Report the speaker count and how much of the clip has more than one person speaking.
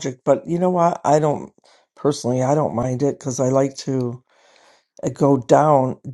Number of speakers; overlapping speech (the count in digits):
1, no overlap